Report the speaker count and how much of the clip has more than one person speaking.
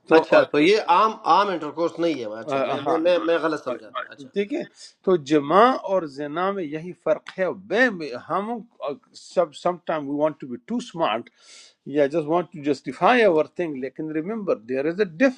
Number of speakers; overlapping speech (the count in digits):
2, about 6%